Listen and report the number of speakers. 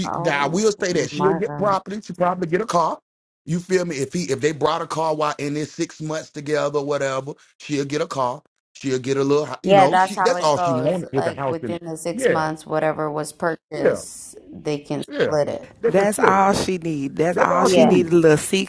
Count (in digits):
3